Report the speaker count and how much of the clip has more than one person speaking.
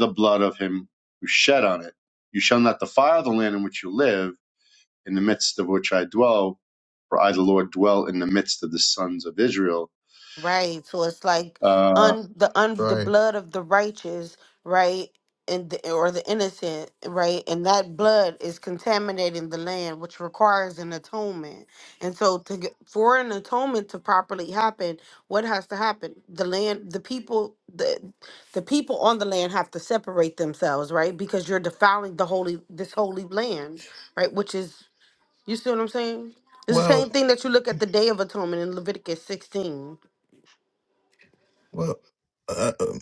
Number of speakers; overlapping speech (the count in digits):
3, about 2%